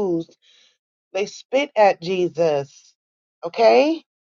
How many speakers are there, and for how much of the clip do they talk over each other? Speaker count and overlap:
one, no overlap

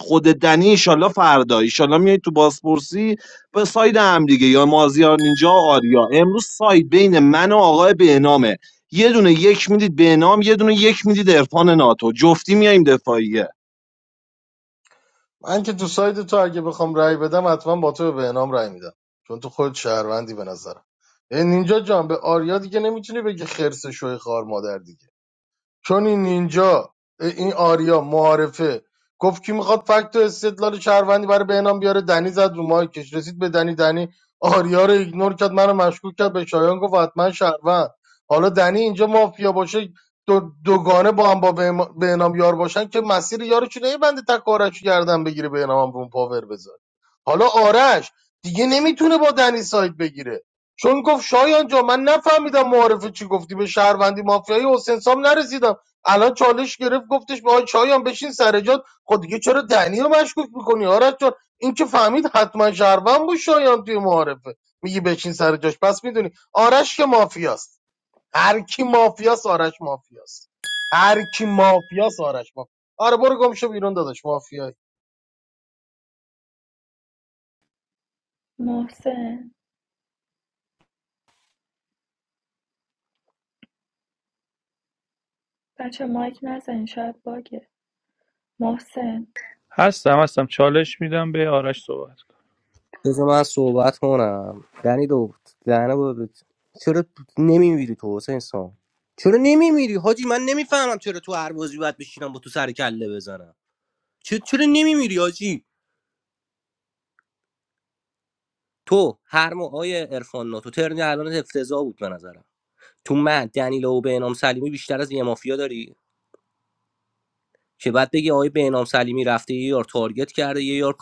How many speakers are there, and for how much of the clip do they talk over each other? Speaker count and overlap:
five, no overlap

